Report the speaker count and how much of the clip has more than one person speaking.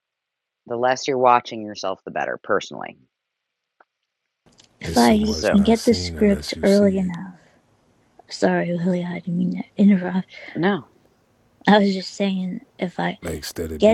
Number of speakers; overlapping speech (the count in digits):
3, about 18%